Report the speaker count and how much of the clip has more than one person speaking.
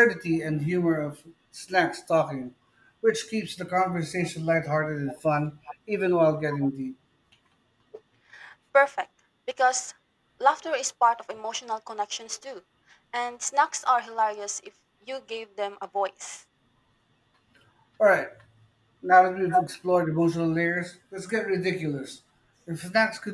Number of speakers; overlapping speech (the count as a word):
two, no overlap